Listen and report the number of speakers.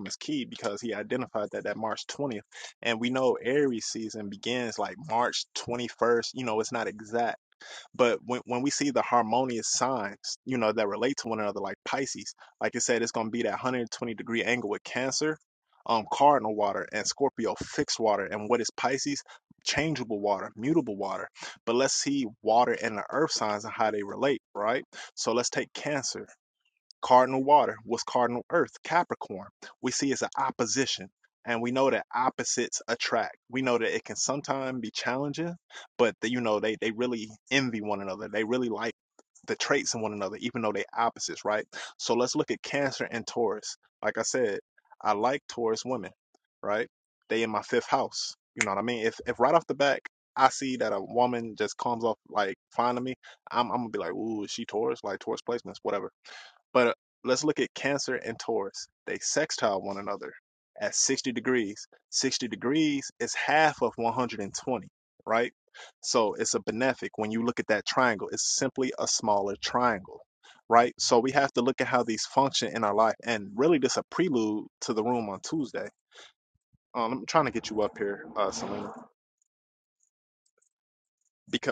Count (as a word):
one